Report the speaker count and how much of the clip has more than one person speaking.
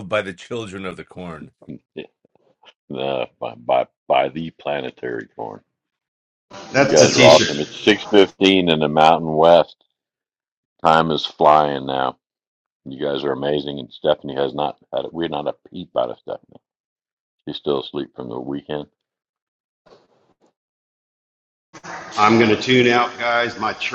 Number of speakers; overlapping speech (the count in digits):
3, about 5%